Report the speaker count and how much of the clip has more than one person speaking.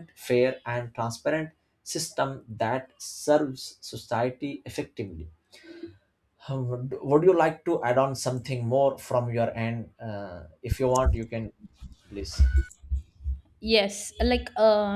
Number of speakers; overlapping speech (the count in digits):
2, no overlap